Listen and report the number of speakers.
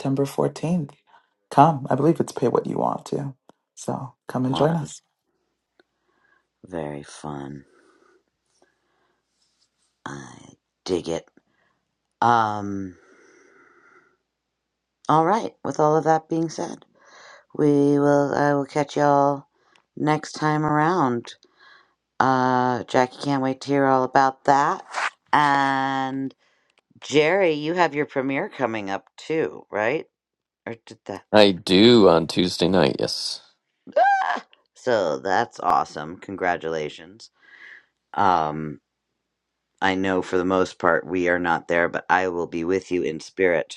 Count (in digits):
3